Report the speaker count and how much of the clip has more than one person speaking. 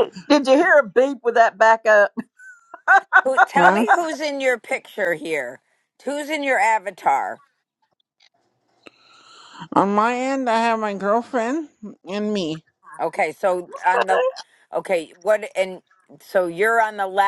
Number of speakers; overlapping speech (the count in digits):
3, about 2%